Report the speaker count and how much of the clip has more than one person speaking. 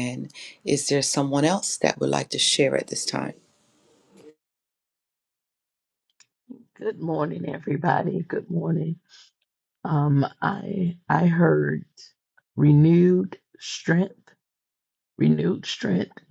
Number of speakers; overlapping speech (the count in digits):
2, no overlap